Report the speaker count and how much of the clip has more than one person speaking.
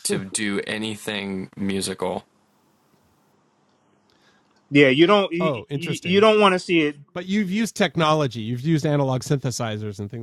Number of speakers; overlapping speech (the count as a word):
three, about 8%